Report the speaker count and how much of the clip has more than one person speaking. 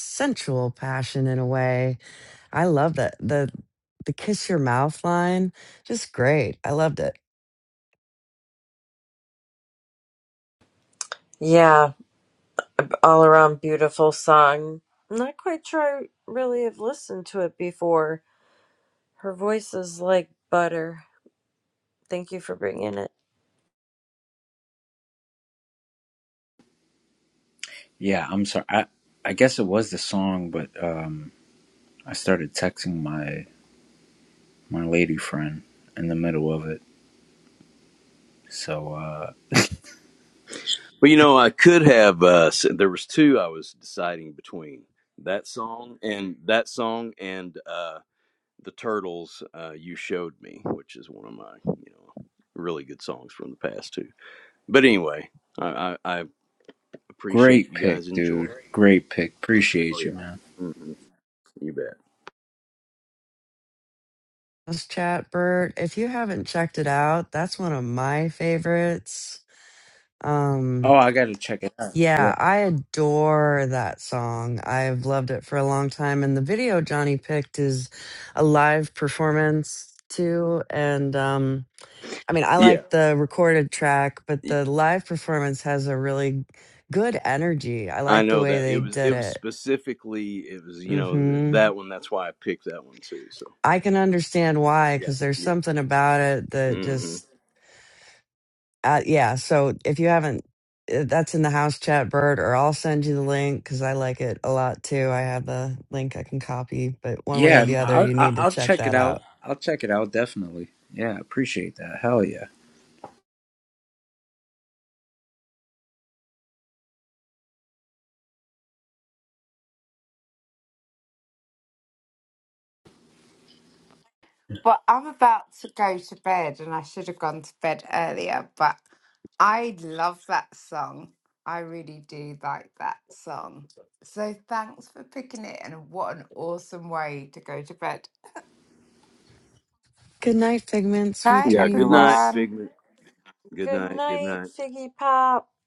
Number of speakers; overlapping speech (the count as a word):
five, about 6%